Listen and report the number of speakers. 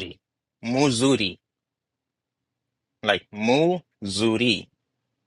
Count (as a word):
one